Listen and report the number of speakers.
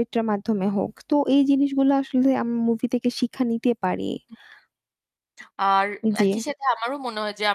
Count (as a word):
two